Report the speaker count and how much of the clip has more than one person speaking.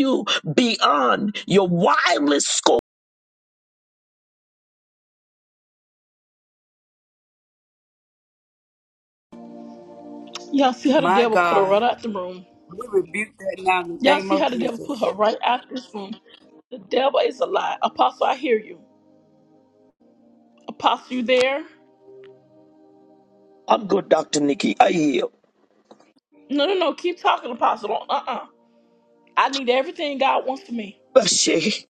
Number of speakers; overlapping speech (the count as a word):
three, about 5%